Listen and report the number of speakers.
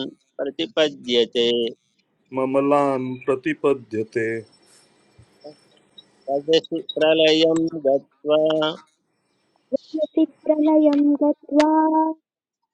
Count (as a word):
three